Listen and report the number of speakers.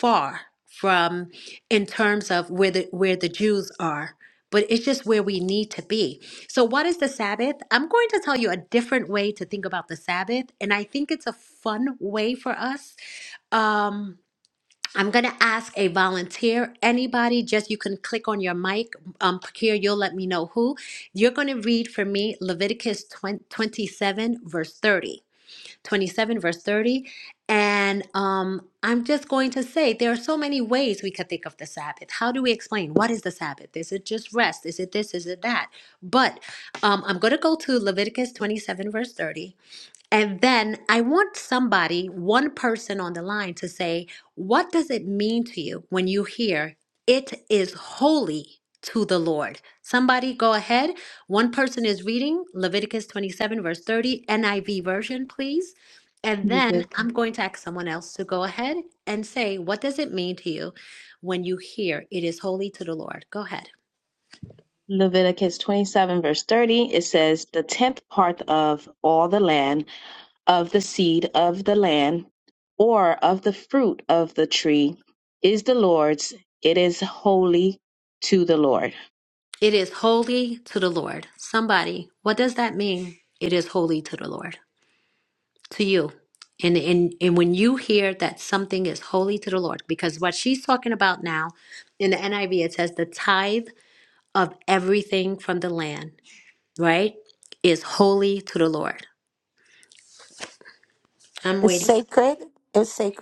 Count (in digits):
3